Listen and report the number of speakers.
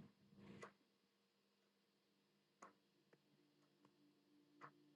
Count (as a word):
zero